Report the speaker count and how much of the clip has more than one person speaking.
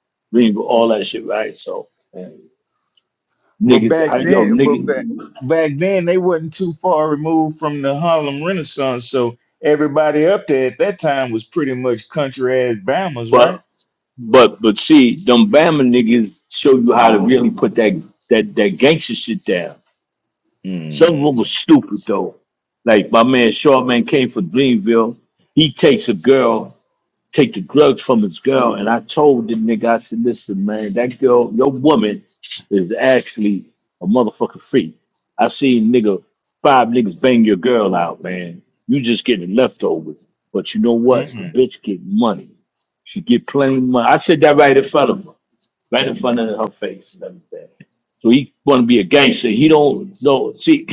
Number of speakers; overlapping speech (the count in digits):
2, about 5%